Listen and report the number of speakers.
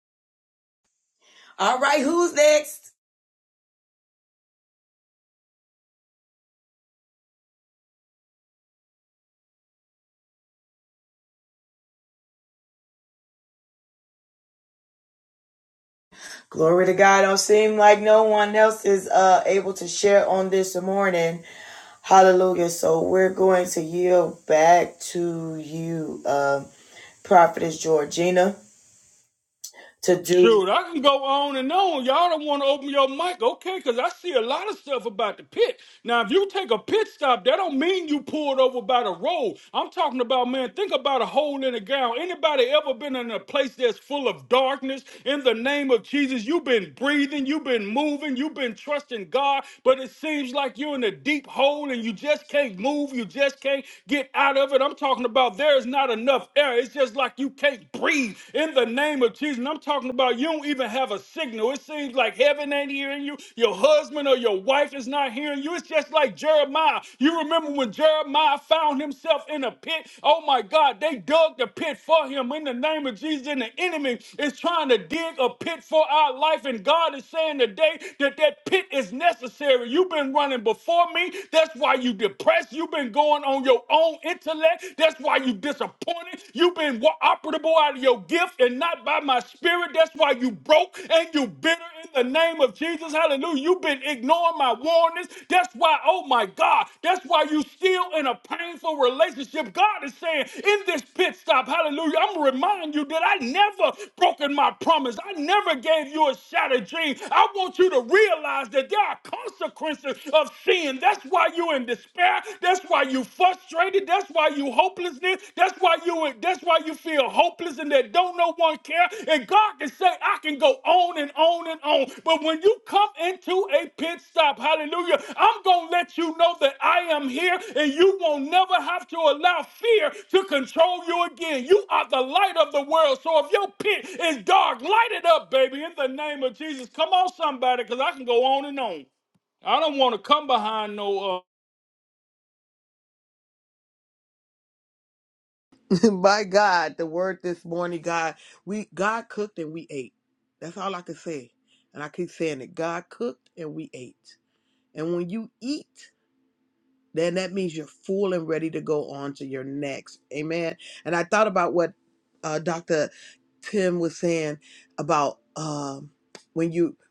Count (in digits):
3